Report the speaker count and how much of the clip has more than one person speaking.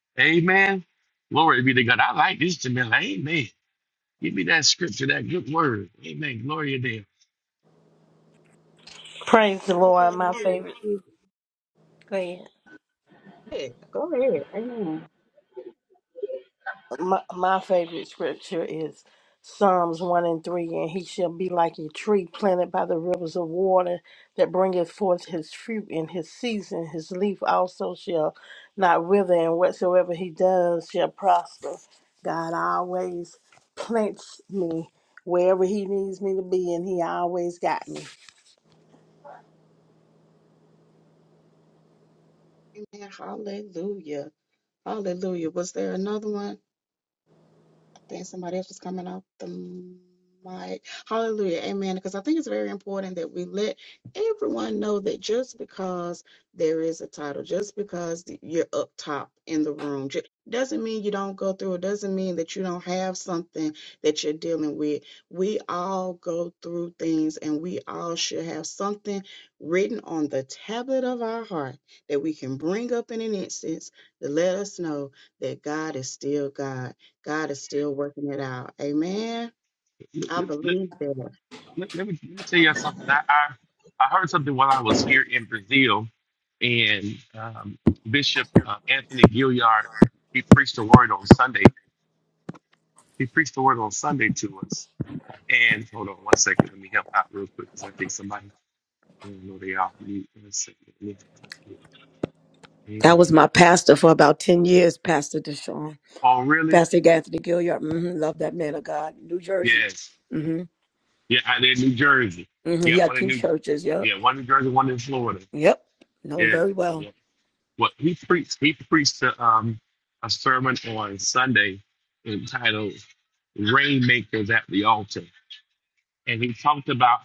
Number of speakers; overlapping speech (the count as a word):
four, about 2%